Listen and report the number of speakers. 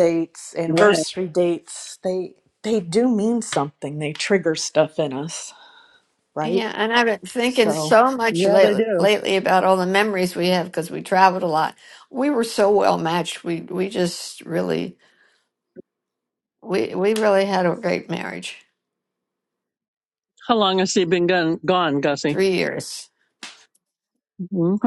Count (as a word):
three